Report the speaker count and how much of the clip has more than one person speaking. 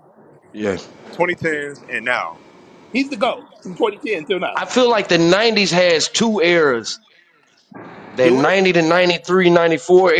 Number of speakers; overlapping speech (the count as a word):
three, about 3%